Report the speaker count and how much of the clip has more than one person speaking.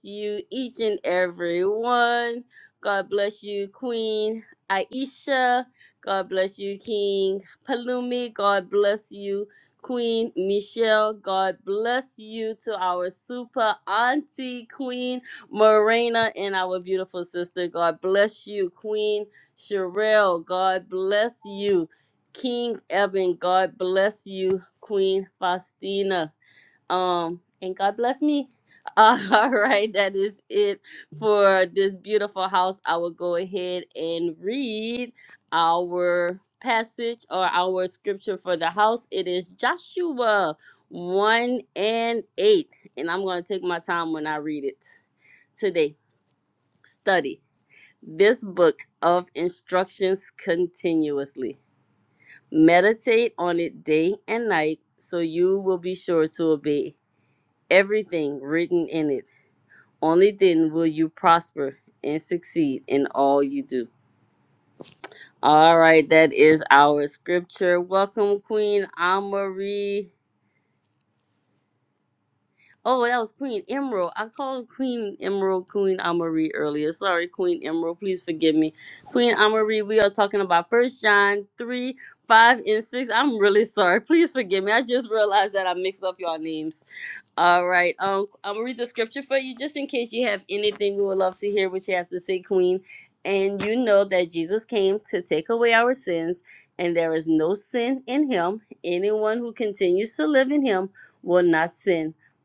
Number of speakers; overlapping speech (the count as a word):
one, no overlap